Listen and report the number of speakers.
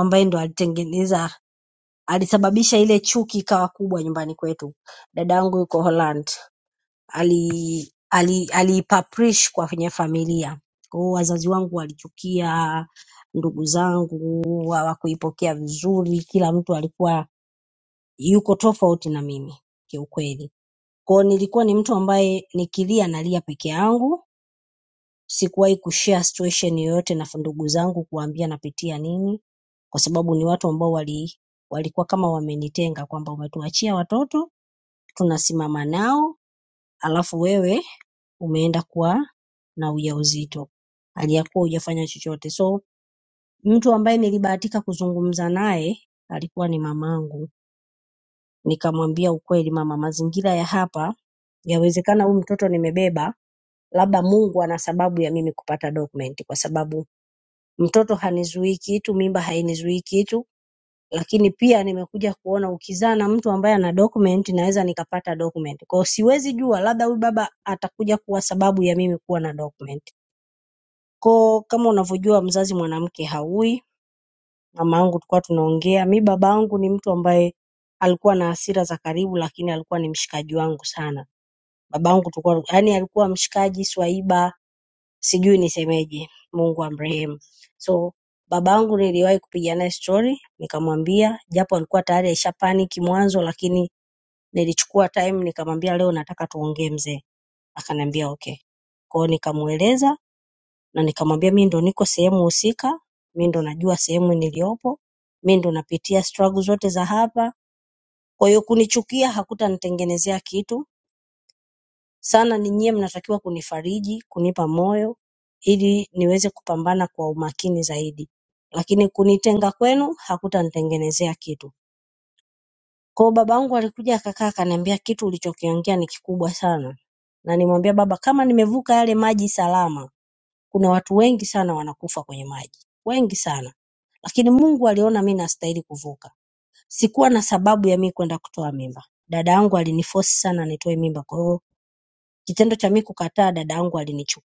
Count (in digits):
1